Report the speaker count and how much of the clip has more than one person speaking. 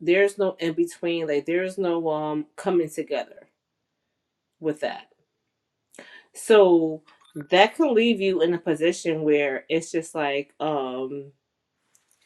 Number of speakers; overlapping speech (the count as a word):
one, no overlap